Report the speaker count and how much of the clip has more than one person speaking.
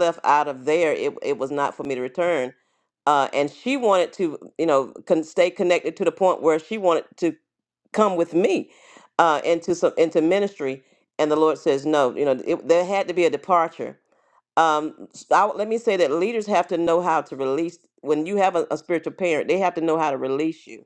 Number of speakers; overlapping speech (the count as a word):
one, no overlap